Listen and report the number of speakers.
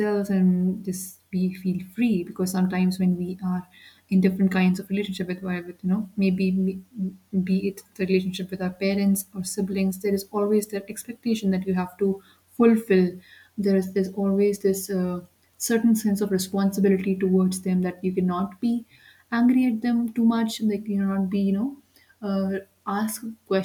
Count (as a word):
one